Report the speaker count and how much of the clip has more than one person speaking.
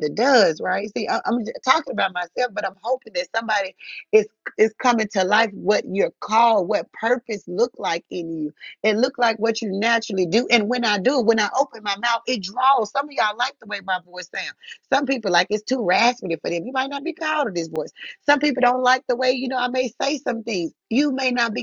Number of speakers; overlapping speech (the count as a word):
one, no overlap